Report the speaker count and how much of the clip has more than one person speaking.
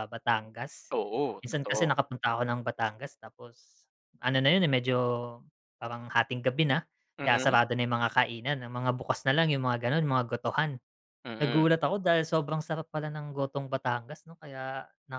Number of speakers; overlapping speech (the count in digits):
2, about 7%